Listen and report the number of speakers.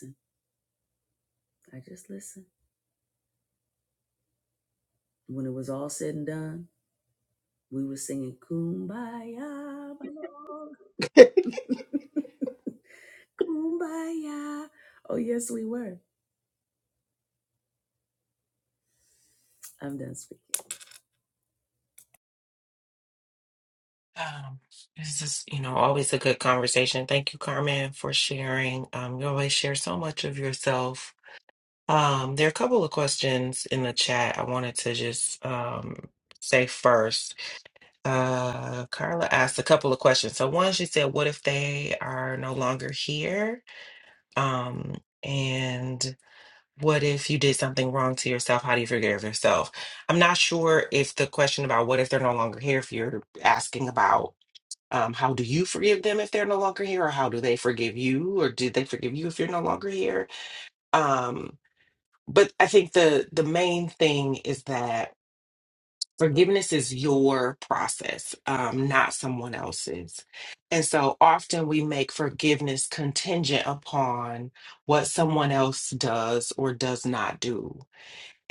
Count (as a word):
two